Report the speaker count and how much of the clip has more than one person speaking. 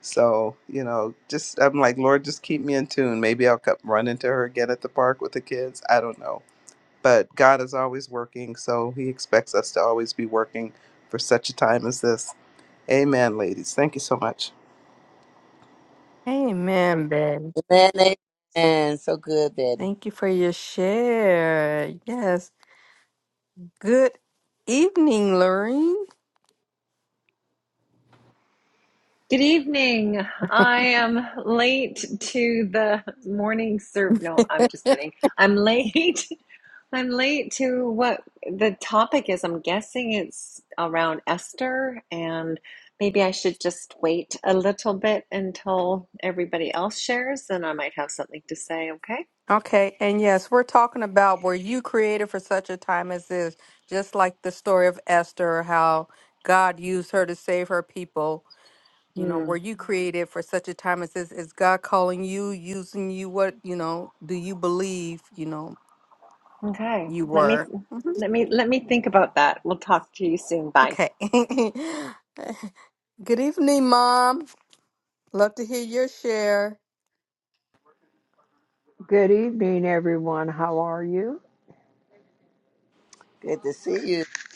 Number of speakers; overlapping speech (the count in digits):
5, about 1%